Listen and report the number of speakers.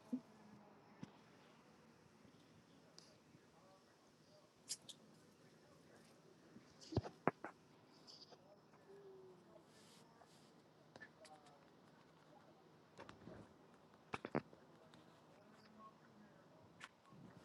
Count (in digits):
0